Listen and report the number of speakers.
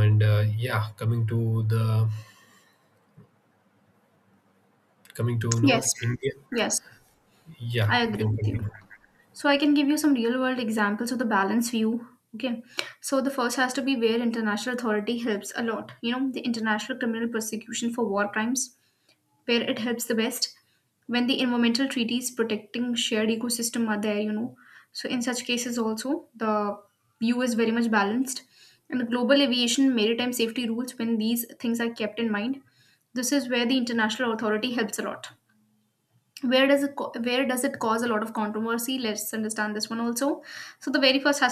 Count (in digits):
2